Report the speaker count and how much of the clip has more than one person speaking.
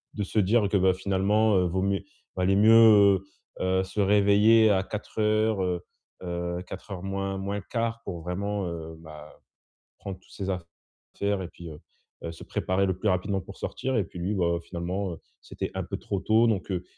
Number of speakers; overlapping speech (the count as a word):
one, no overlap